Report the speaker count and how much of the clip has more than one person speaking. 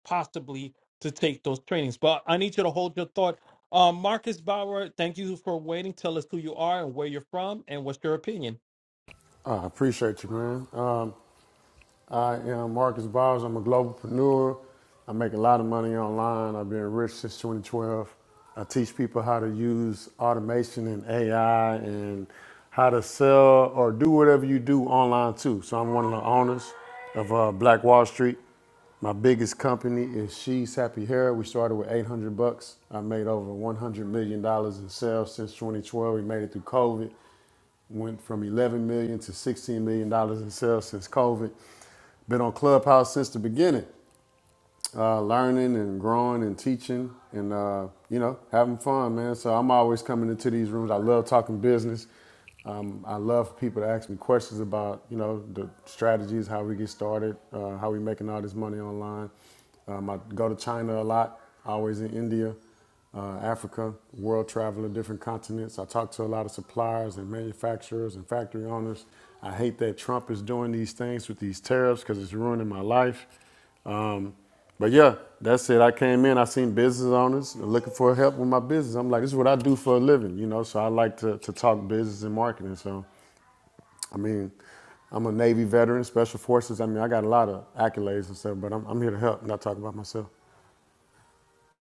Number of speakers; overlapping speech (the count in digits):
2, no overlap